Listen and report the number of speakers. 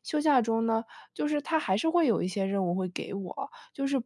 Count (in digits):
1